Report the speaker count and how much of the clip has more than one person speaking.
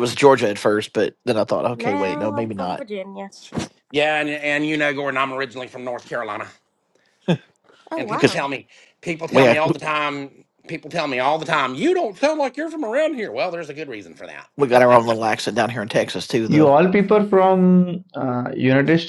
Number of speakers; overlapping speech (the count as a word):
four, about 13%